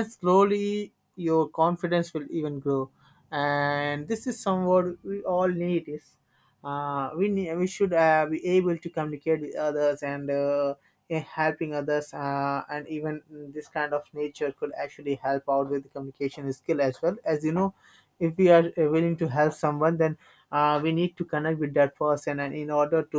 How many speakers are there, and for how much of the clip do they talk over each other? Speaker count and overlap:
1, no overlap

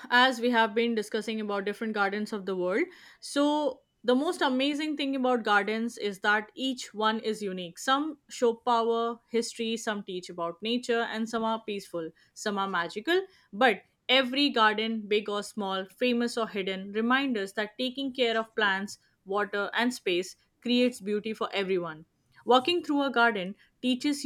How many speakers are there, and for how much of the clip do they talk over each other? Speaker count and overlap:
1, no overlap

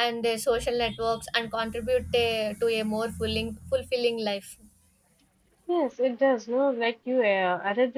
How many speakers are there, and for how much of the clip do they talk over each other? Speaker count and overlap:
2, no overlap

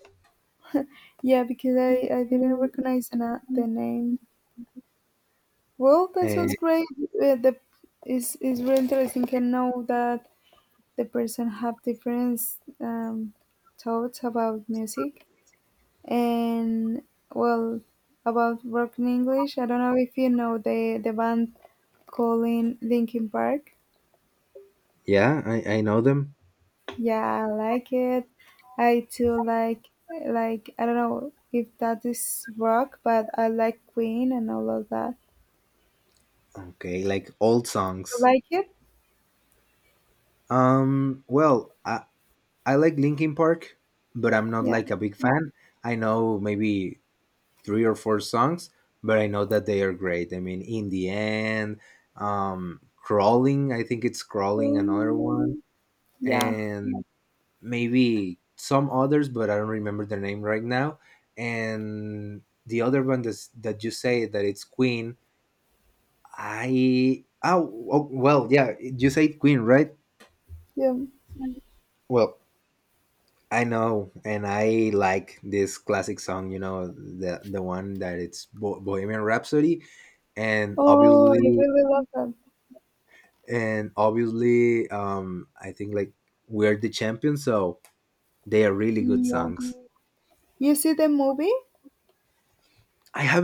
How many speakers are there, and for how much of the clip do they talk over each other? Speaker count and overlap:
2, about 4%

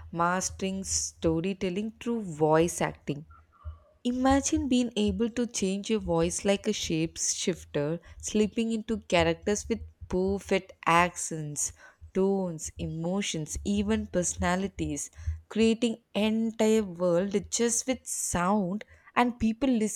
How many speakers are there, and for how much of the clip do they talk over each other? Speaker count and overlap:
1, no overlap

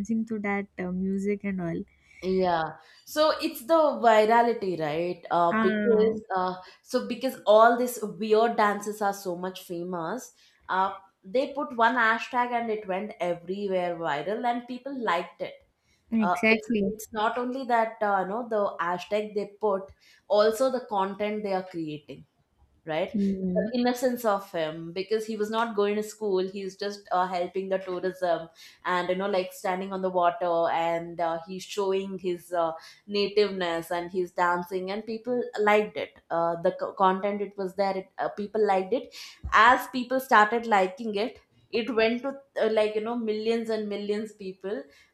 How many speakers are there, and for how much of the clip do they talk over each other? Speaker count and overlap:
2, about 4%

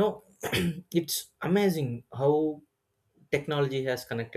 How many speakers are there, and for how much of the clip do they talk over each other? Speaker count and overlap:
1, no overlap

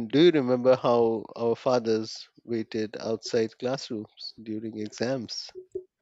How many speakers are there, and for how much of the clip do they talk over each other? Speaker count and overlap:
1, no overlap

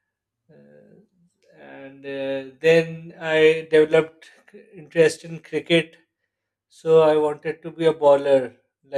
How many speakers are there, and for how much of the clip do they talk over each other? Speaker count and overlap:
1, no overlap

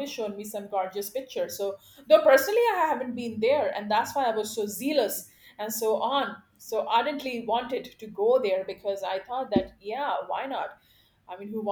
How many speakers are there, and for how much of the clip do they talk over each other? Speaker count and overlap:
1, no overlap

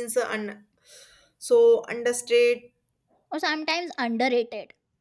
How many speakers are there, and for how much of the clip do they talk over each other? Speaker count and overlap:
2, no overlap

